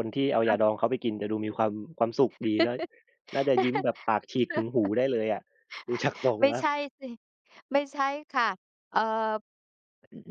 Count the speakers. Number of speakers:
2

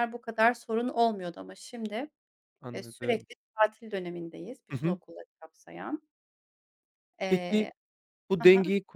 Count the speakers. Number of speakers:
2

